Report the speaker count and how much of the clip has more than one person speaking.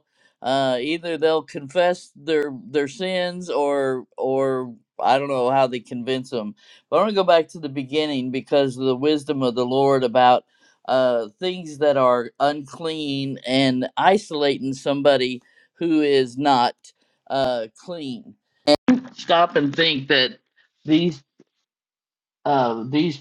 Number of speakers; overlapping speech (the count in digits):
1, no overlap